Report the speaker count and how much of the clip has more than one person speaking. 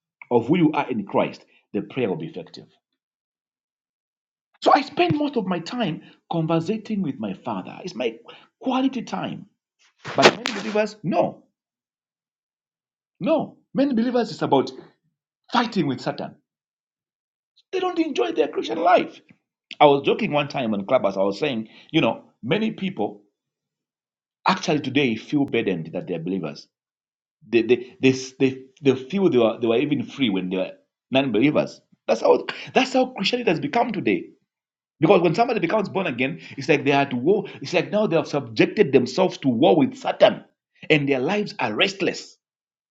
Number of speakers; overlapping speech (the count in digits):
1, no overlap